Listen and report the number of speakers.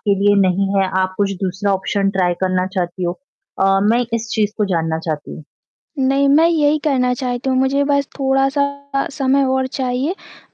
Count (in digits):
2